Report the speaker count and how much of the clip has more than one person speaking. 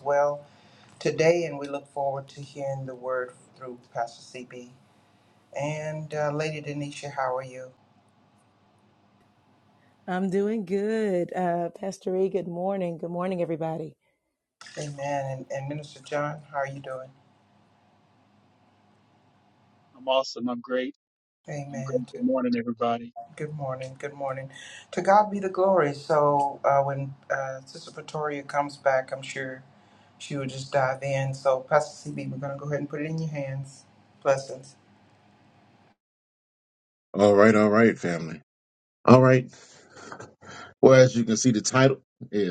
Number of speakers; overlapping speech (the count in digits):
4, about 1%